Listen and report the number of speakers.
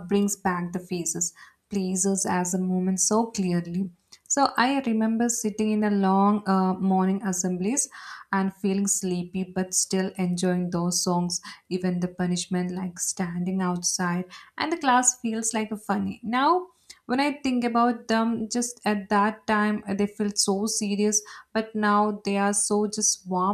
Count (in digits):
1